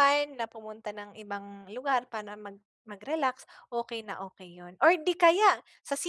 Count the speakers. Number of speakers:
one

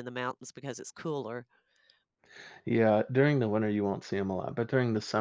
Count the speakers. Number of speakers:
two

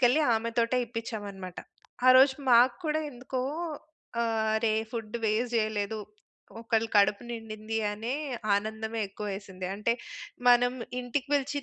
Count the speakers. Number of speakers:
one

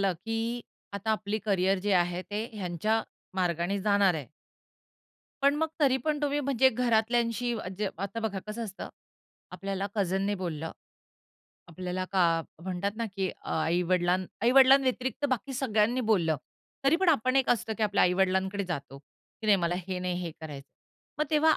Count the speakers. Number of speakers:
one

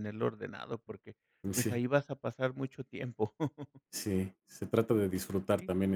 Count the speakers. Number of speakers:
two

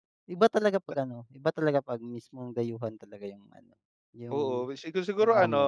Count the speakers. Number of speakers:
two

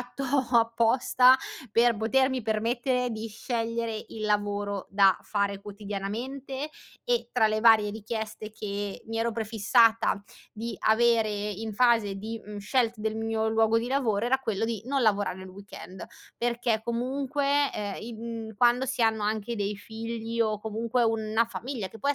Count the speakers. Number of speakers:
one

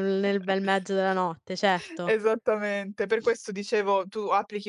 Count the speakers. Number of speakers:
two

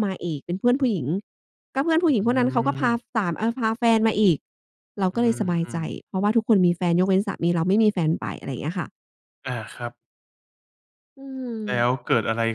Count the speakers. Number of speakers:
two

